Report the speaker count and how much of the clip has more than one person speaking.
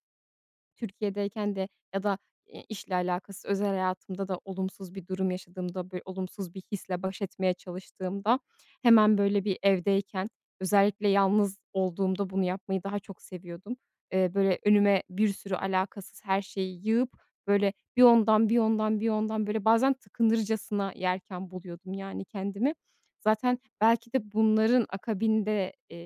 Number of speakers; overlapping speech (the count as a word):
one, no overlap